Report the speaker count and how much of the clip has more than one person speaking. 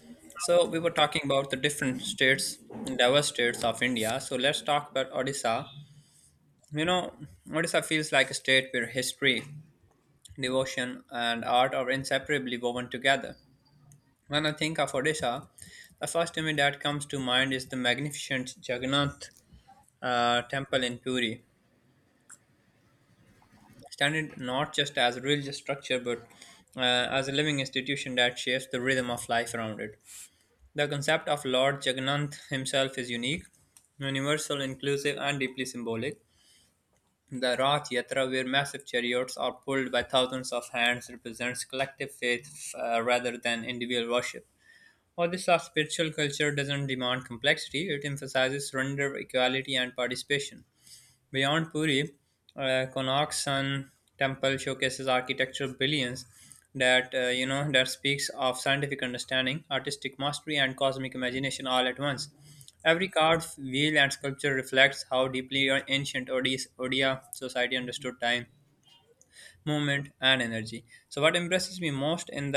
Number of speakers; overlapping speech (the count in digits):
1, no overlap